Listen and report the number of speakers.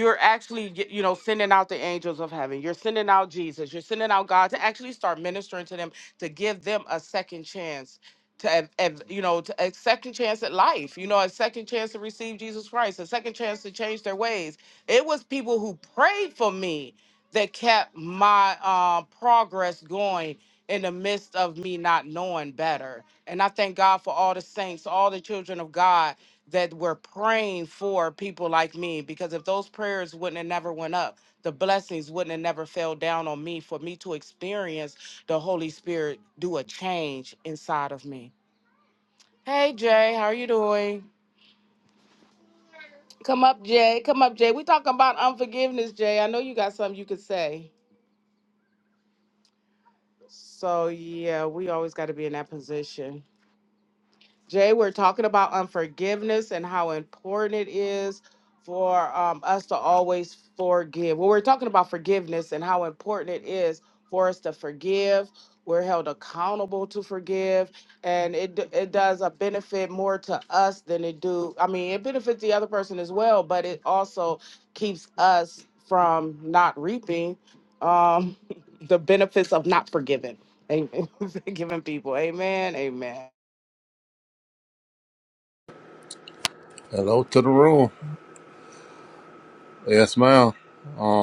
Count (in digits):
2